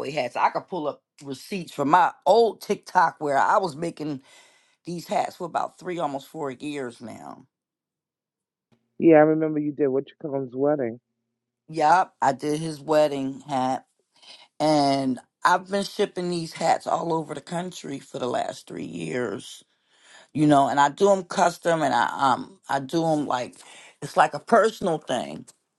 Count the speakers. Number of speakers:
2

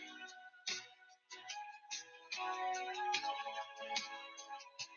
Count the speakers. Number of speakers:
0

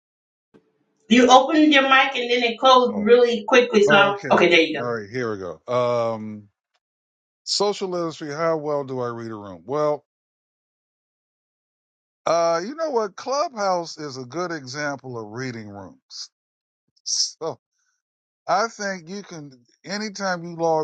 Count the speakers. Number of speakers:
2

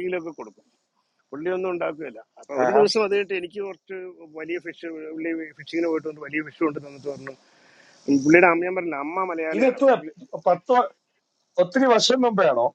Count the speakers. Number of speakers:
2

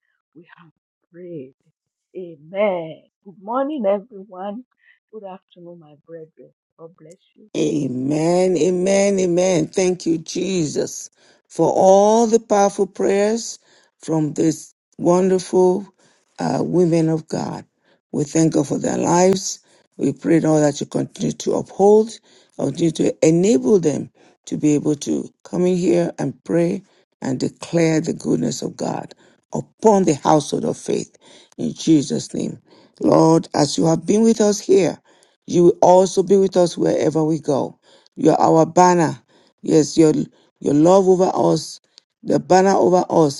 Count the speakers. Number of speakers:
2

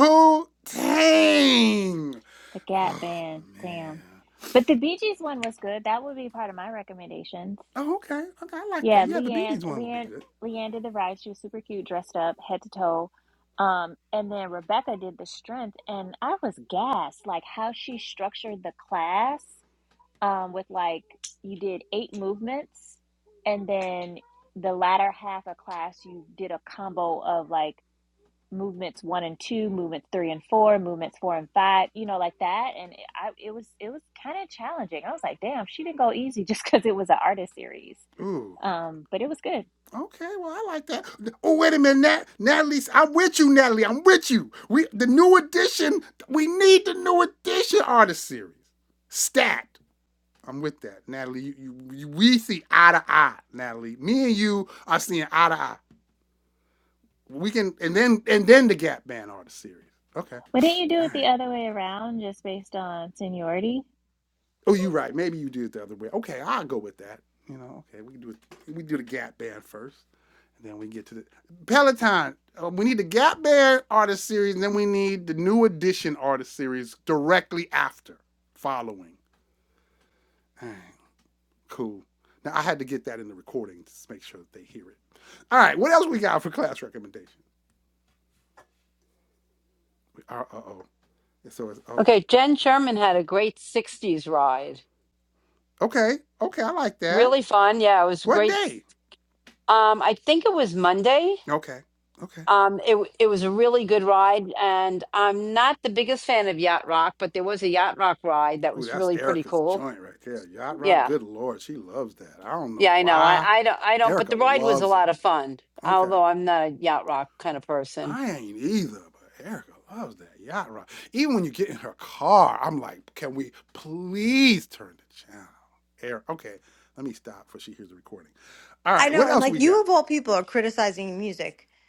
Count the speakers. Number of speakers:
4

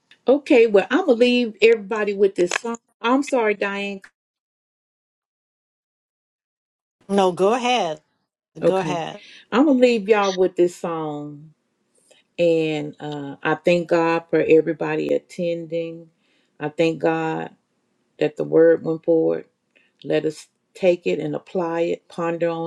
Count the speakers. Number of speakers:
2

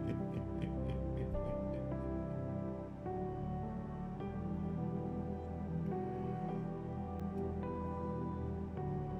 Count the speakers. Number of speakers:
0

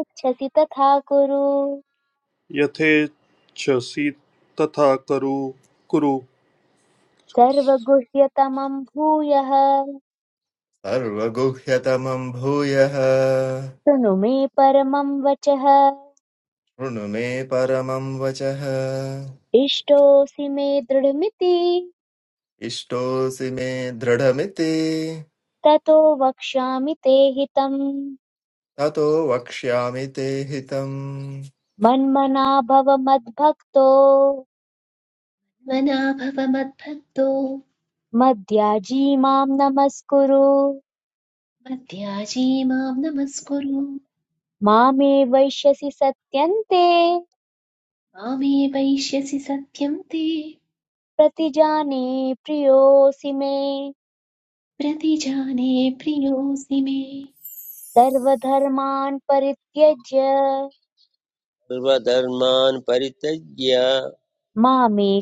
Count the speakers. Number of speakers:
5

